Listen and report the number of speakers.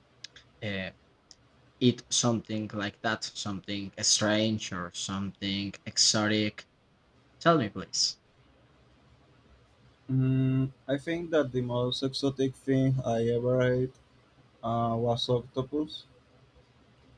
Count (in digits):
2